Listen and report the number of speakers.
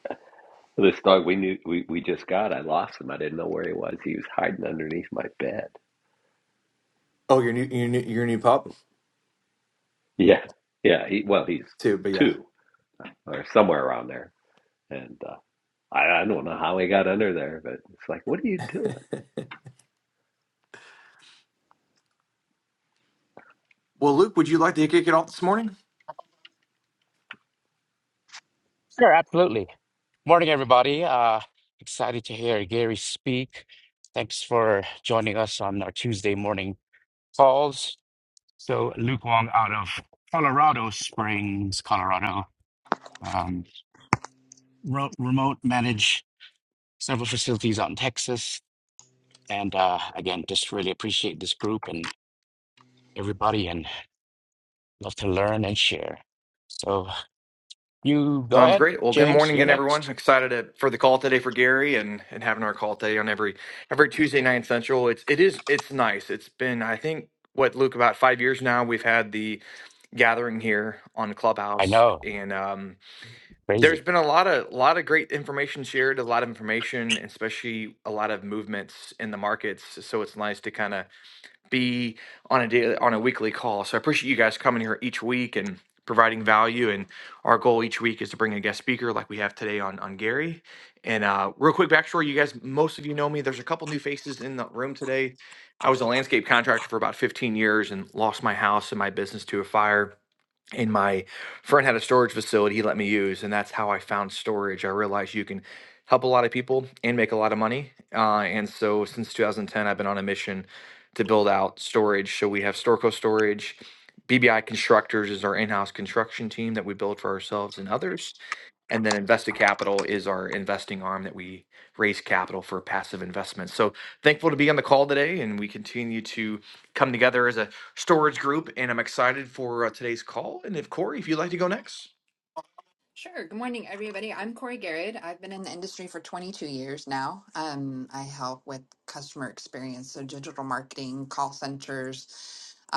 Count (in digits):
4